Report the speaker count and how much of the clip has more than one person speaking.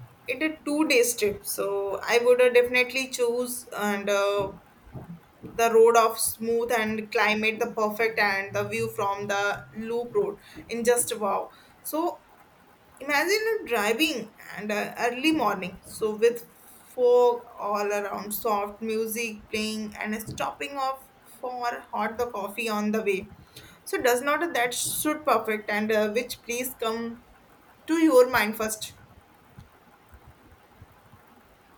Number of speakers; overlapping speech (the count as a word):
one, no overlap